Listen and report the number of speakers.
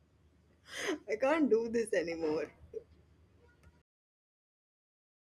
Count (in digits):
1